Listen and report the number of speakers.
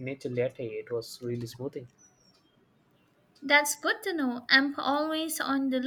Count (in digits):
2